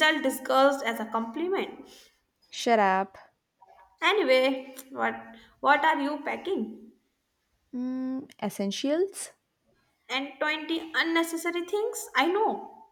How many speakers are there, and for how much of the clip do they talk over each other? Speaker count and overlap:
two, no overlap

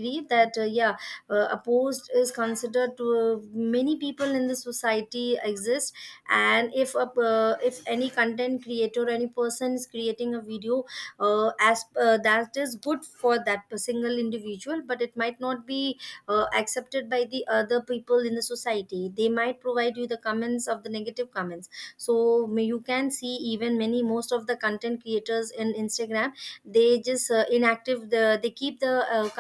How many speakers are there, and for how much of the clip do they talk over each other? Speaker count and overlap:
one, no overlap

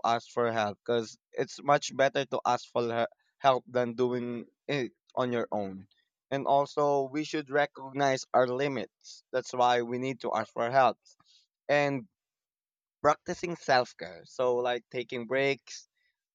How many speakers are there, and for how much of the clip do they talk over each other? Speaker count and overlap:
one, no overlap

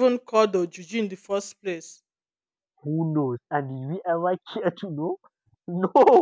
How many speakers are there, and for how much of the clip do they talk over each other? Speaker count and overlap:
two, no overlap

